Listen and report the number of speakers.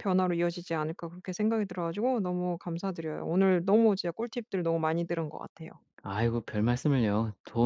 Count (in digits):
2